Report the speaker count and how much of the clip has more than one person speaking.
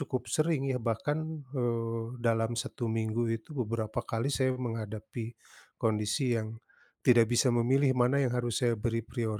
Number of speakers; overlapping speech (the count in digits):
1, no overlap